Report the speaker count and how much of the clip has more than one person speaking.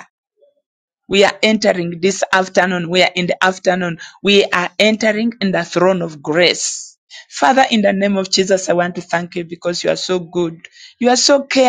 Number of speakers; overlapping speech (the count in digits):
1, no overlap